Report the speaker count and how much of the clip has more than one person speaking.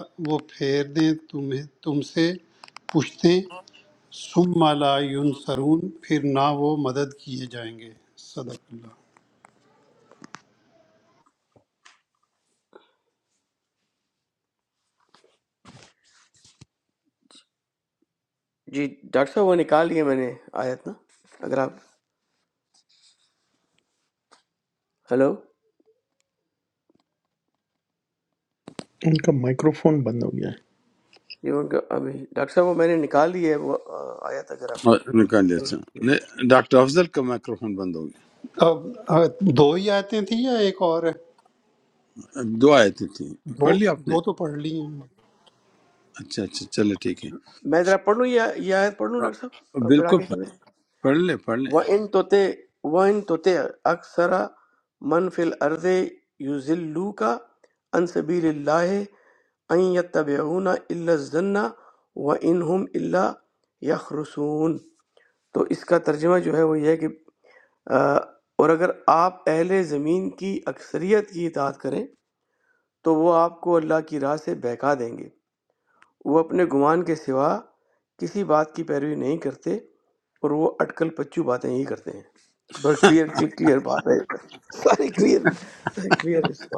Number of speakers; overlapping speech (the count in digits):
4, about 2%